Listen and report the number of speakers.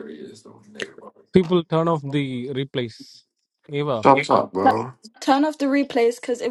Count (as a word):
three